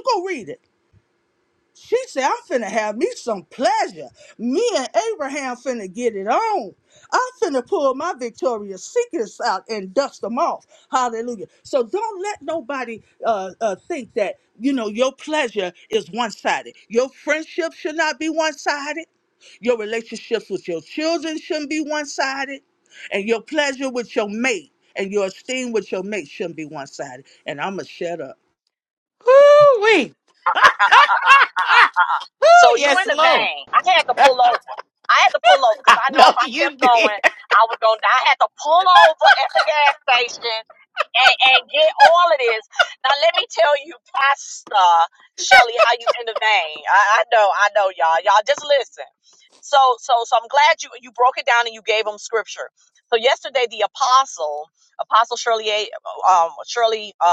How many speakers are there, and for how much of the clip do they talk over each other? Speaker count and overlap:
three, about 4%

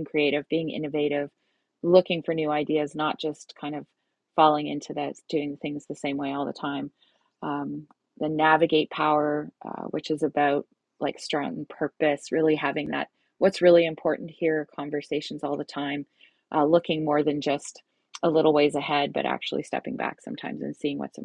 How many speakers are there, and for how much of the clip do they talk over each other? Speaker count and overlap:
one, no overlap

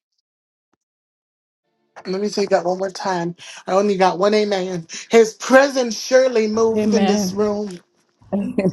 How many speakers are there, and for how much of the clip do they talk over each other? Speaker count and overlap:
two, about 8%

